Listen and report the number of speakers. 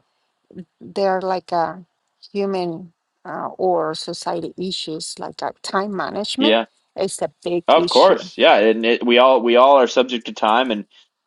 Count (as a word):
two